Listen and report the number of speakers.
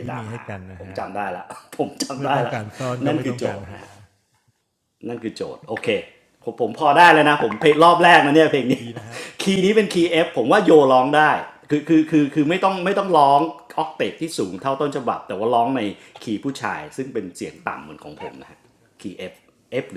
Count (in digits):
2